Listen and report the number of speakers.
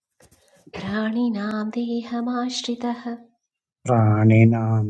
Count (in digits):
2